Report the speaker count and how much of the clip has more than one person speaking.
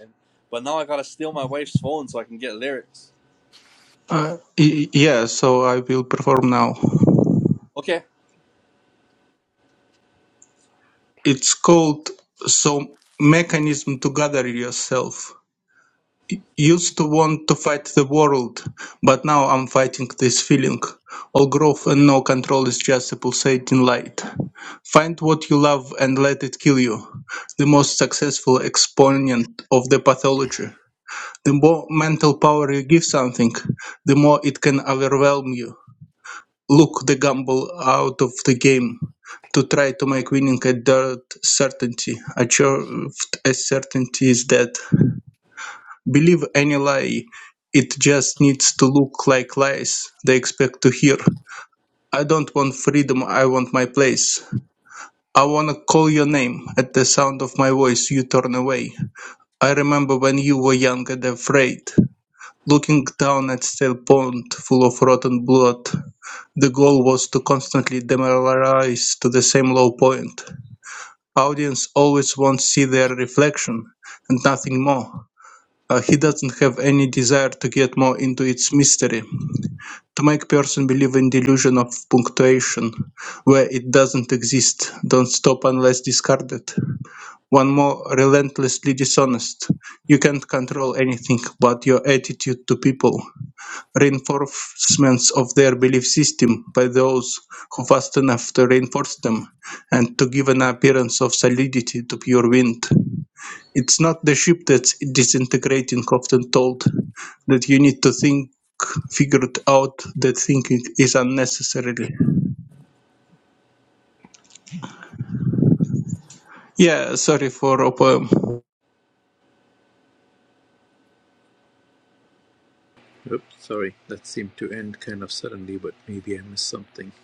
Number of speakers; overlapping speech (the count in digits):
3, no overlap